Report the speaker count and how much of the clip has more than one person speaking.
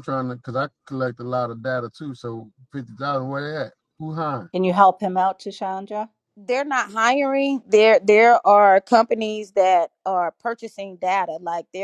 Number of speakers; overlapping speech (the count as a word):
three, no overlap